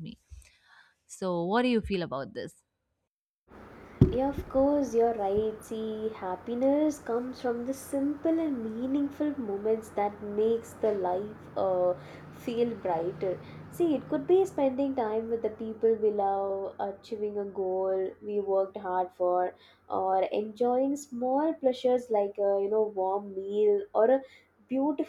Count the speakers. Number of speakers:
two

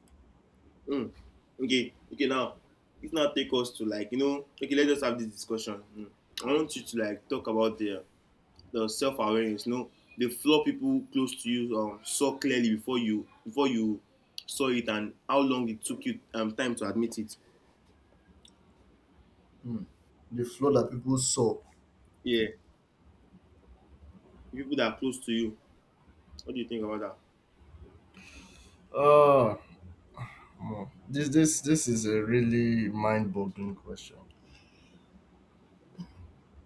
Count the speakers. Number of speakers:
two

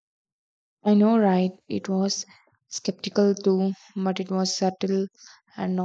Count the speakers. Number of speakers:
one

